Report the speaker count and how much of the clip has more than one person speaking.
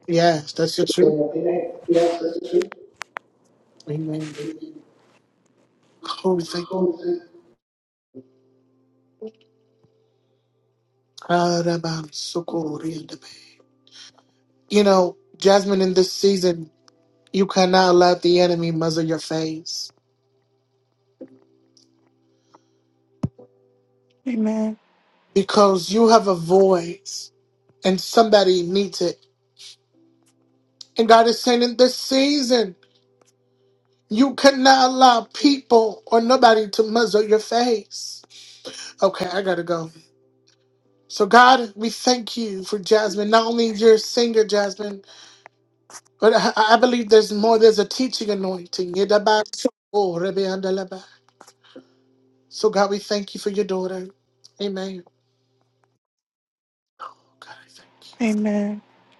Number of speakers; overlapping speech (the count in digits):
3, under 1%